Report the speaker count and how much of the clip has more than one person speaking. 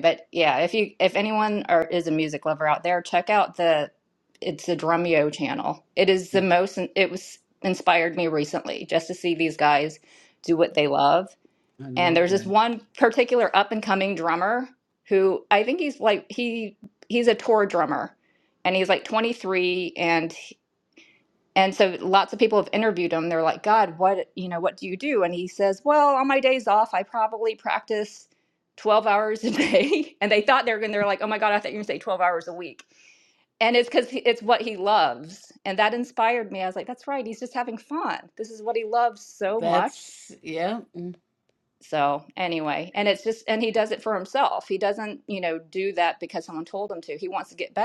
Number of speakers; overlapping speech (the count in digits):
2, about 2%